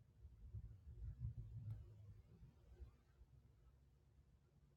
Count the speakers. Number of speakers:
0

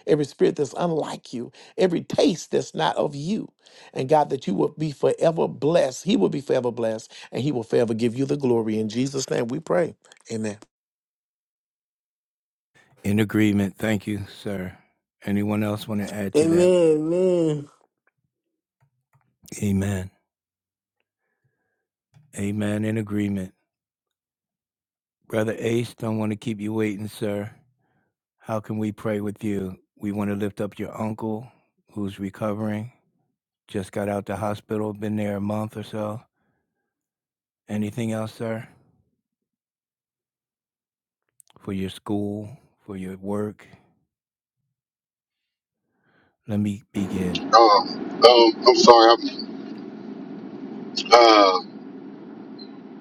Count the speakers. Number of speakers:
4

